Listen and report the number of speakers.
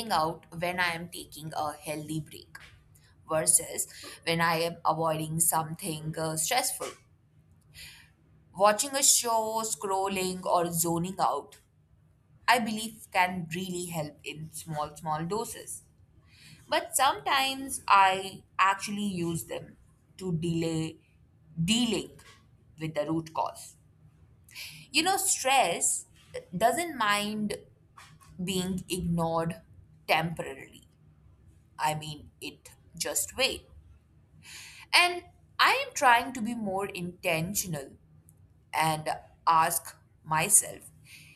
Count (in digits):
1